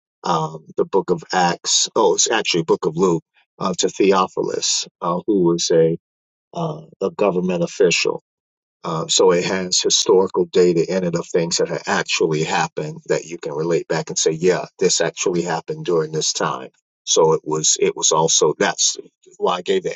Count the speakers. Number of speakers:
1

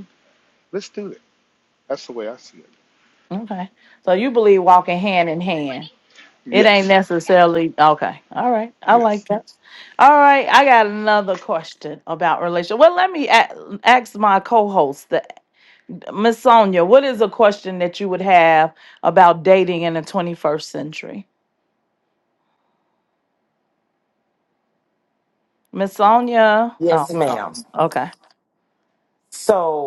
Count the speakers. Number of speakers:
3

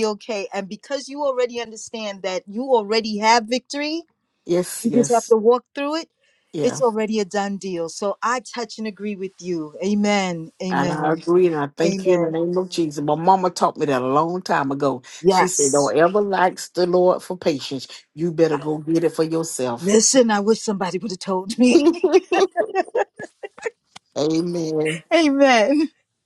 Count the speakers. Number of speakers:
2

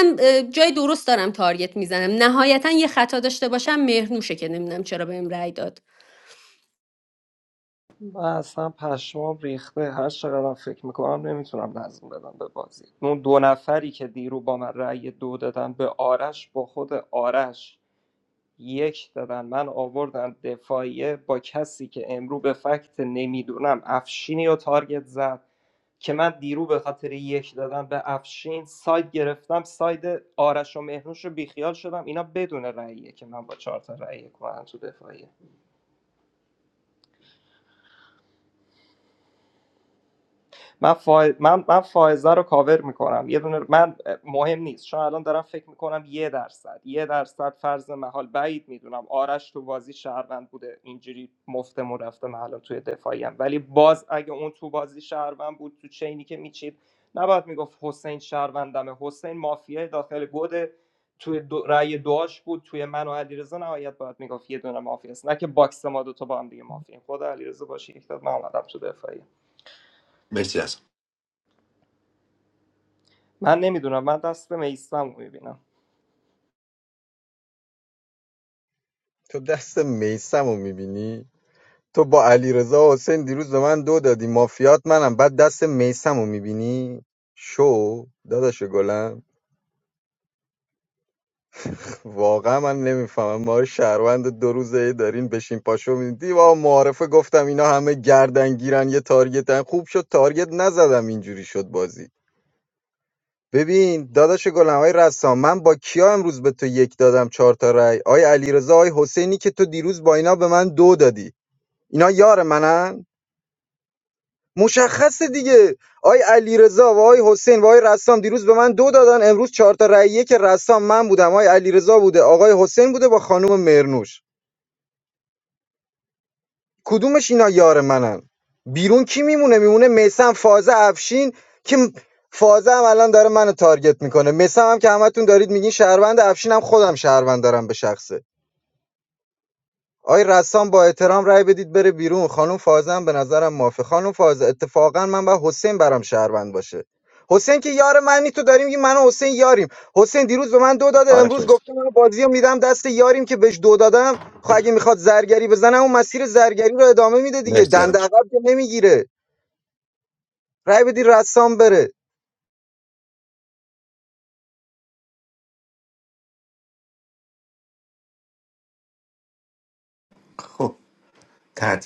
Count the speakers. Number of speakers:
4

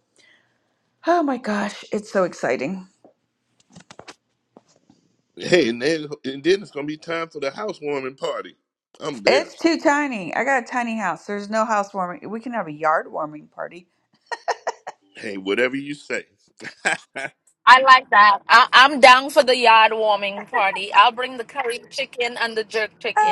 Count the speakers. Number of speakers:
3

